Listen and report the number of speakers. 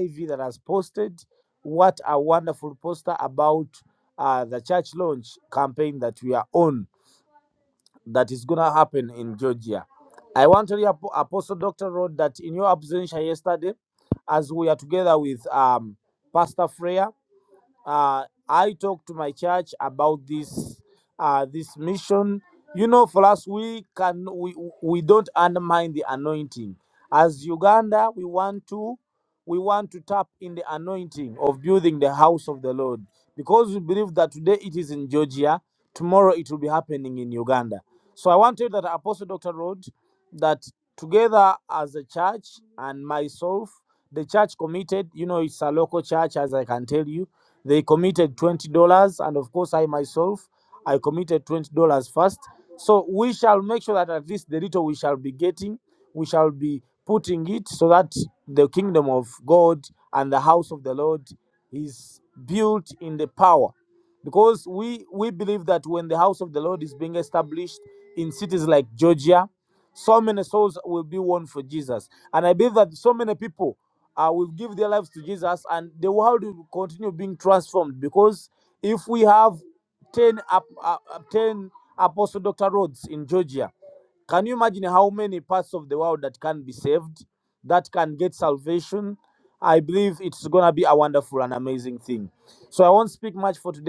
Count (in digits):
1